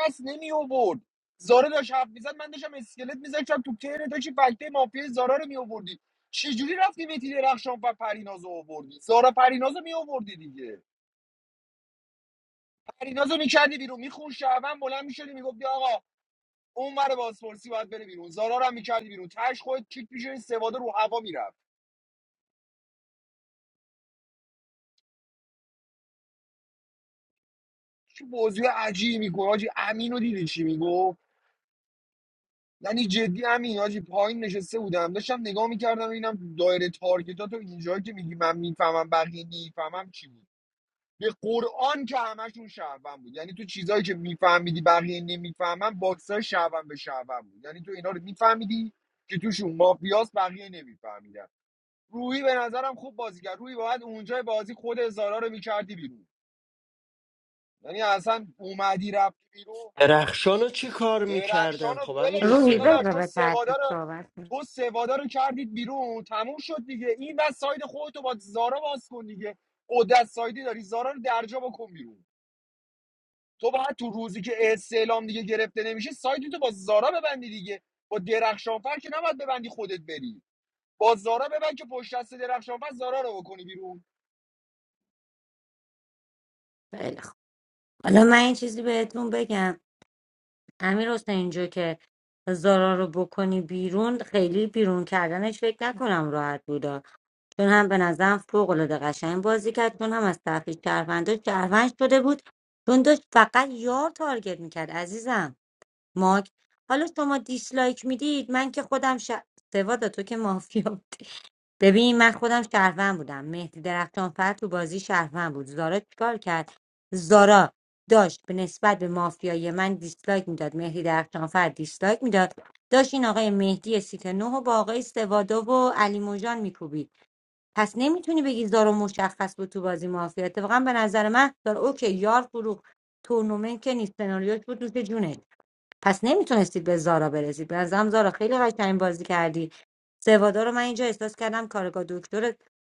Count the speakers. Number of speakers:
3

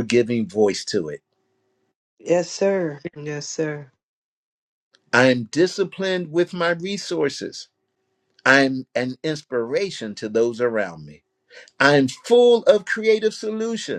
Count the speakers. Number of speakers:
2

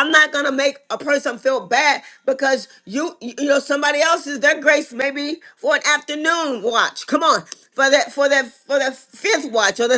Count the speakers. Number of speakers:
1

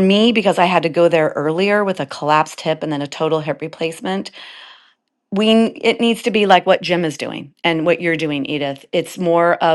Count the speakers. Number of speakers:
1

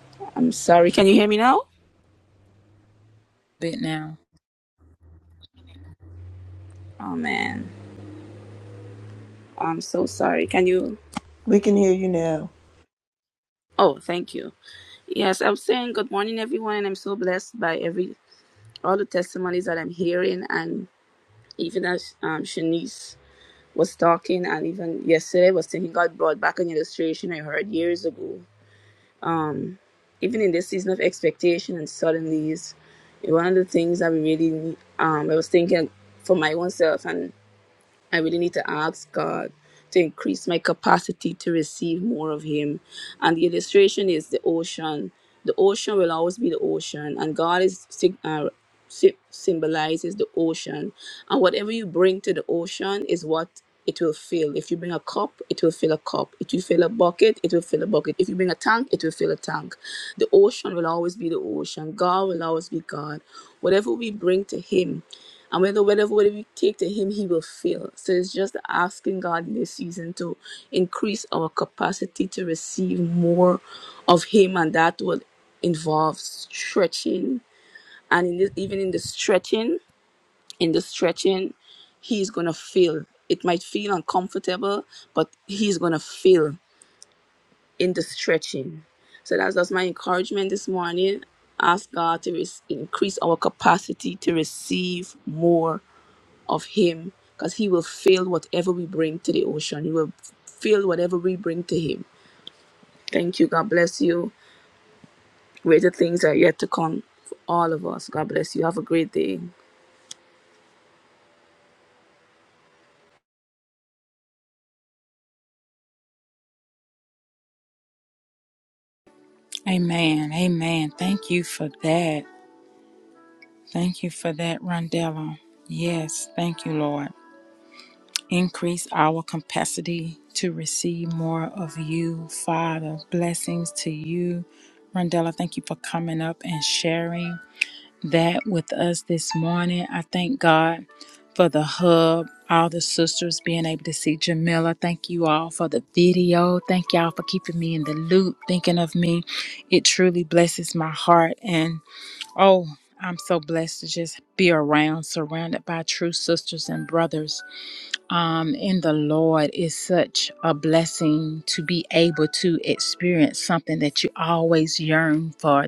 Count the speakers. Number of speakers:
3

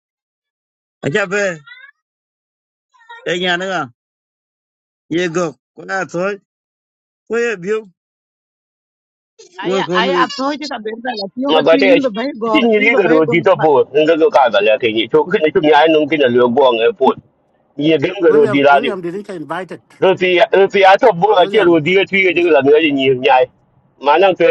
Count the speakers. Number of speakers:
4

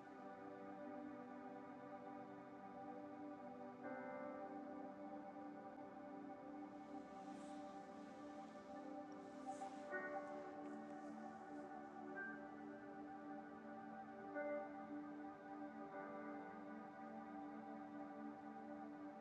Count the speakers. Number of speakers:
0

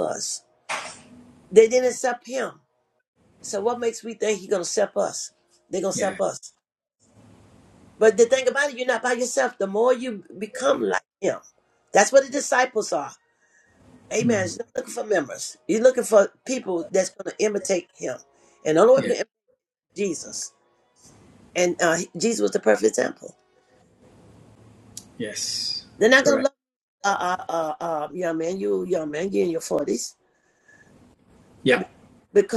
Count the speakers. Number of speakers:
2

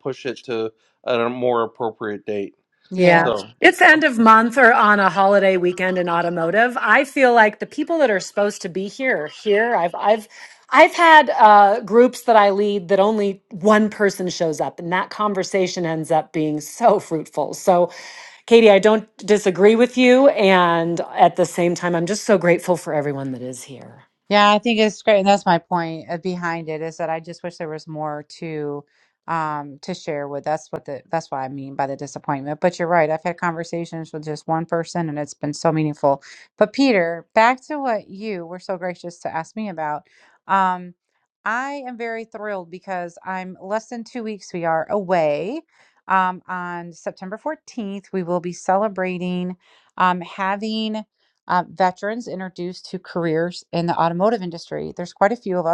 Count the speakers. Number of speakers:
3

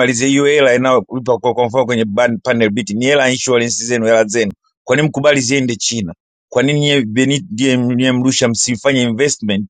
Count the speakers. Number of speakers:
1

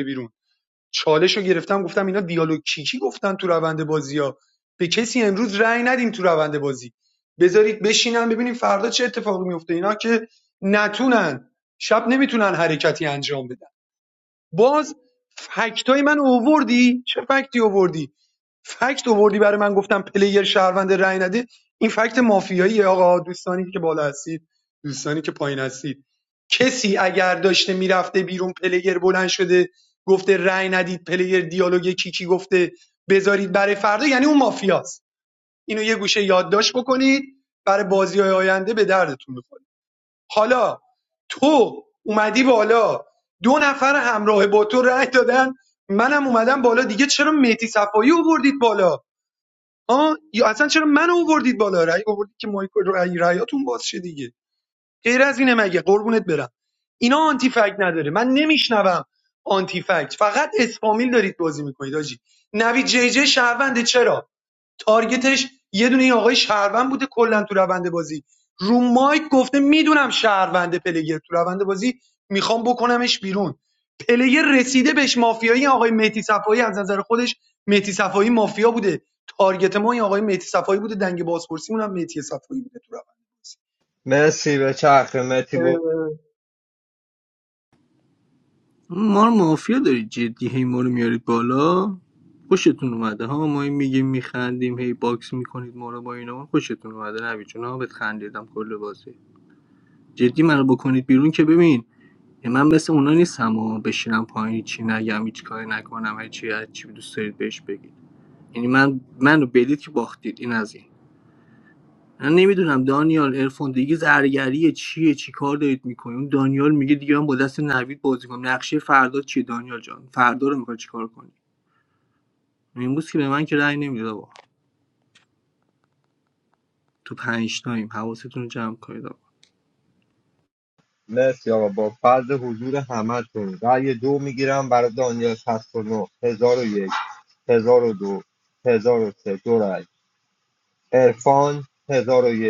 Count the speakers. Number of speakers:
3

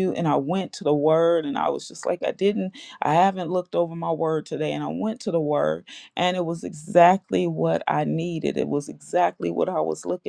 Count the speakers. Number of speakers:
1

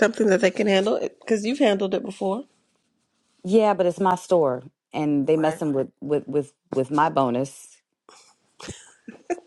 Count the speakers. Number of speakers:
2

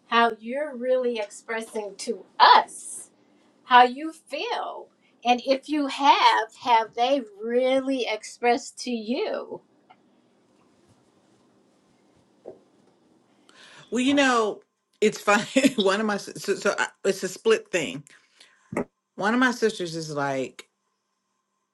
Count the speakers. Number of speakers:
2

